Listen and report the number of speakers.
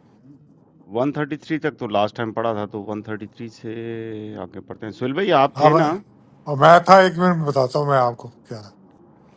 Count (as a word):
two